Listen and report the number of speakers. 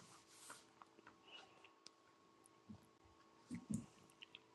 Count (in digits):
0